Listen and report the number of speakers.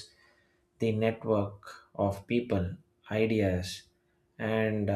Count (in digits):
1